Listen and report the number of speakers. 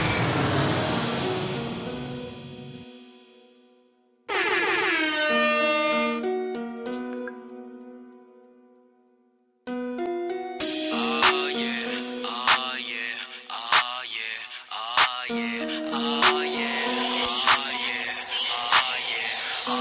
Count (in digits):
0